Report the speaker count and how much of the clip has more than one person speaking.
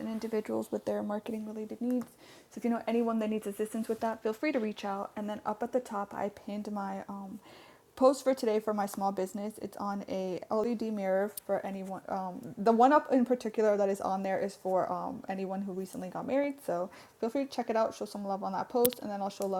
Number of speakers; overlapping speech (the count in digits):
1, no overlap